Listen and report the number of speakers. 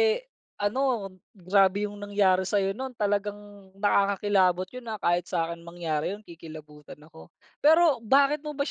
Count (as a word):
one